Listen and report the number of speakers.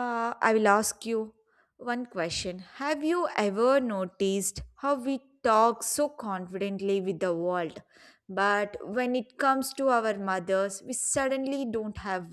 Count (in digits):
1